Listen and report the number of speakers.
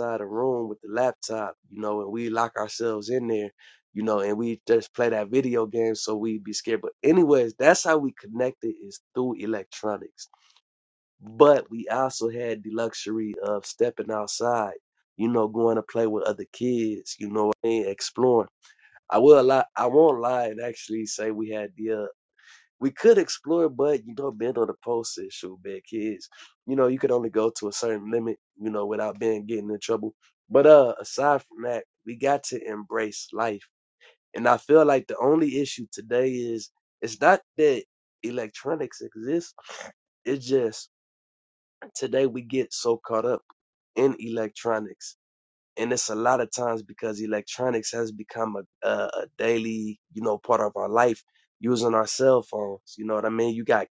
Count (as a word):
one